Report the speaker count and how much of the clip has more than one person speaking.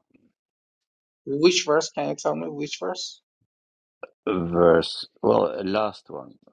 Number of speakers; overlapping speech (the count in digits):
2, no overlap